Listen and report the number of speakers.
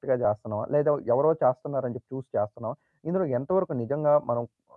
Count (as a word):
one